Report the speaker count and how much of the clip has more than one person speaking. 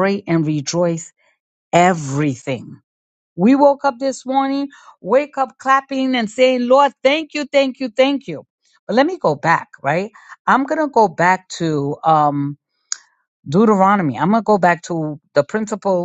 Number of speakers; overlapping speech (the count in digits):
1, no overlap